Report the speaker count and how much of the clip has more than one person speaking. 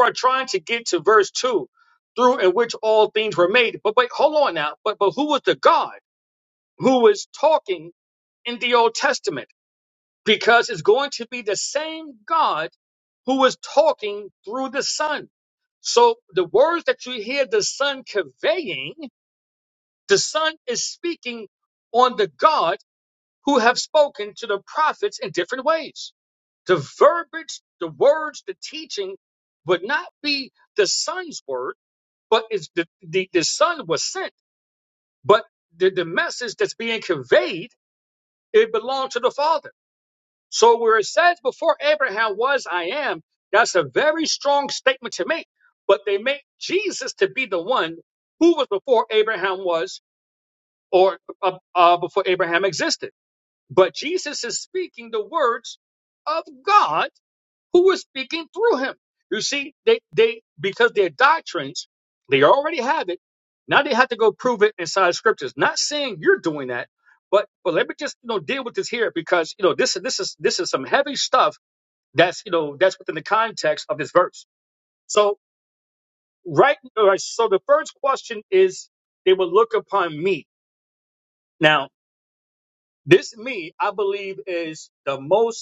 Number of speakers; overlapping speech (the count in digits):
1, no overlap